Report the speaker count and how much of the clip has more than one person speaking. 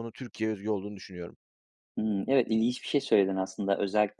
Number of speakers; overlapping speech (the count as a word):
two, no overlap